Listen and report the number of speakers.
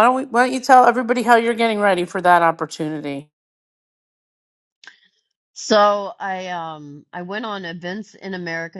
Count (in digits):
2